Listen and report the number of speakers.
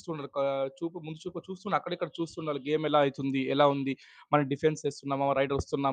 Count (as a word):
one